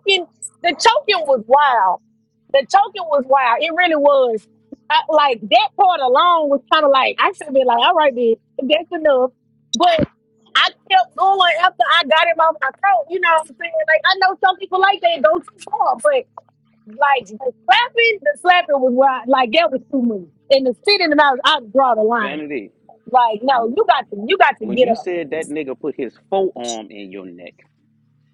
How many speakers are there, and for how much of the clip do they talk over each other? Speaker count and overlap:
two, about 2%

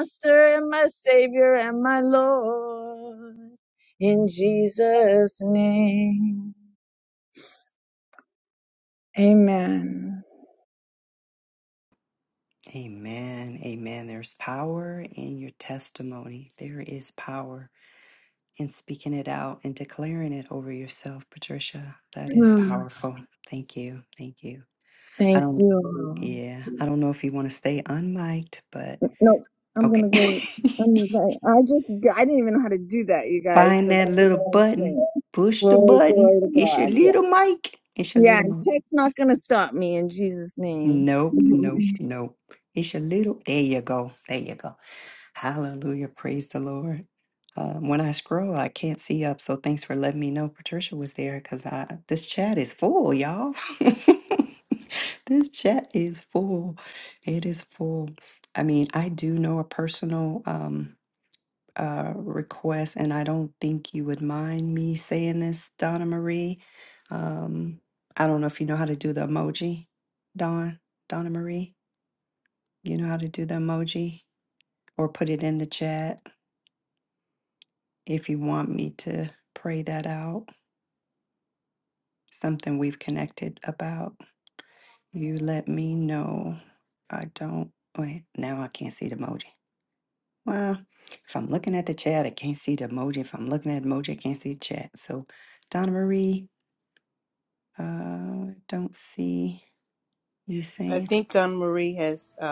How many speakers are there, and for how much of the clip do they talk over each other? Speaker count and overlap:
three, about 5%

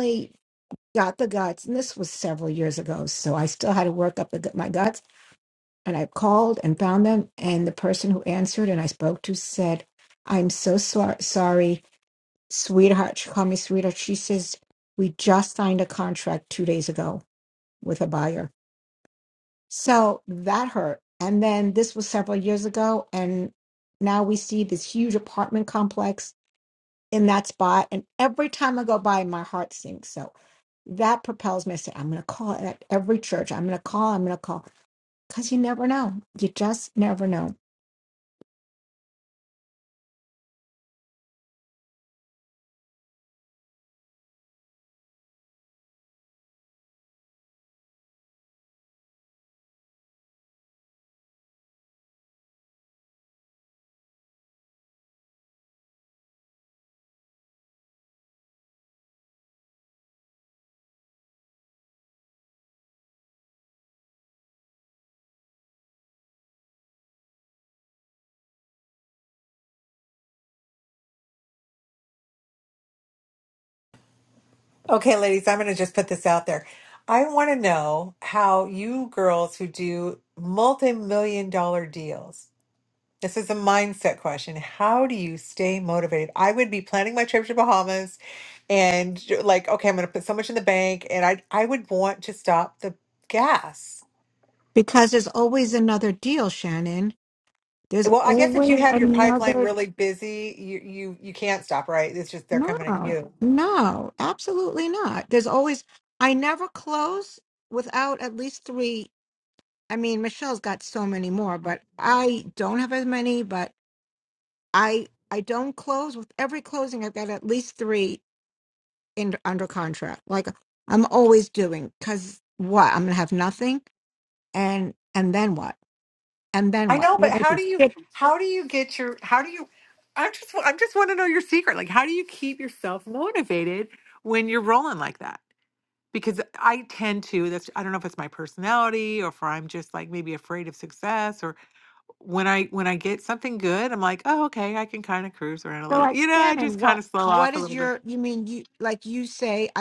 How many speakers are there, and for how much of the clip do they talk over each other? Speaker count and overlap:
two, about 4%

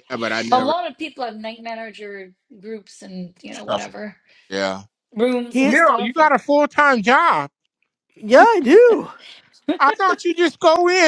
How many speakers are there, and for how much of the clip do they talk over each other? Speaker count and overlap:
three, about 11%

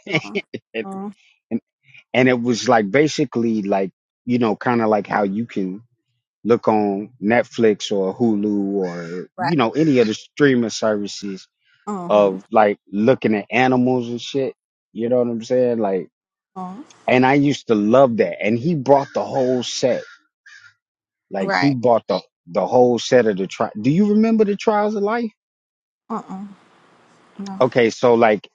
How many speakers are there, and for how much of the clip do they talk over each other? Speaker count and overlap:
two, about 3%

